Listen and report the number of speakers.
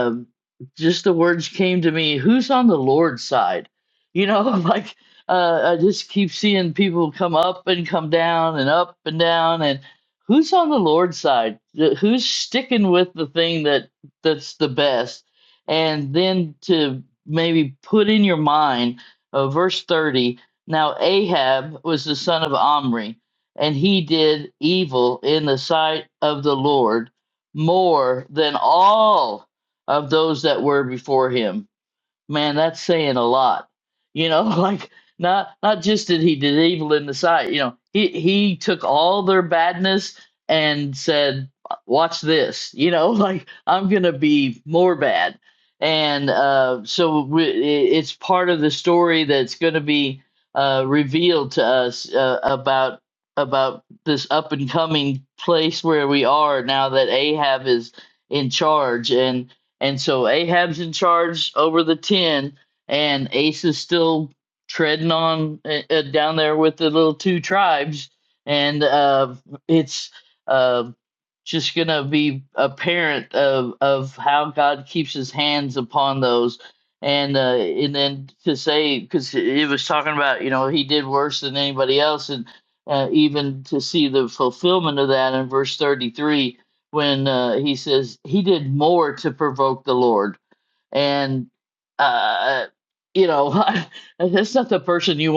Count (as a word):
one